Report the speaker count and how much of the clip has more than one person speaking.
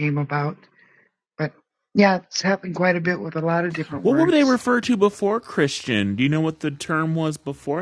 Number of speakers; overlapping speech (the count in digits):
2, about 6%